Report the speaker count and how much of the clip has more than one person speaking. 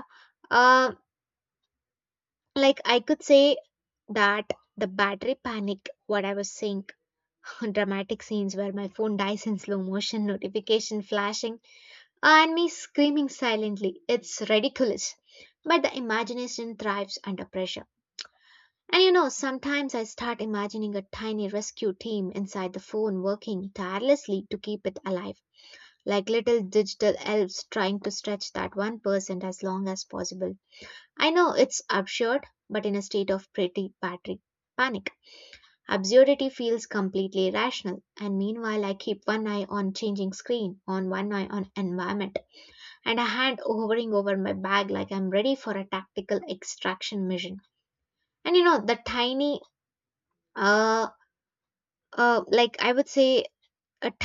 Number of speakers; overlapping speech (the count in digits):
1, no overlap